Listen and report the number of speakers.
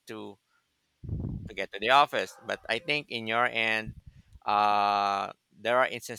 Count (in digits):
1